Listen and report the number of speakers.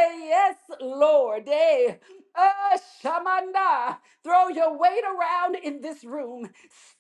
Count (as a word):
one